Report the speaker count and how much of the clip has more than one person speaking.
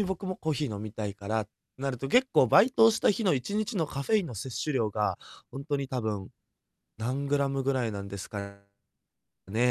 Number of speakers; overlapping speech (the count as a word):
one, no overlap